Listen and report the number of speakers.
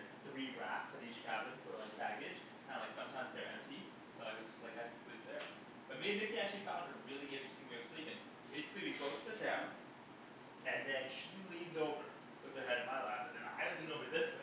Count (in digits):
1